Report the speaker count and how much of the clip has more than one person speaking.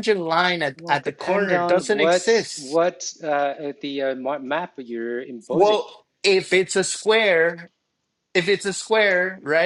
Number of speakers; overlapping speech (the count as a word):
two, about 21%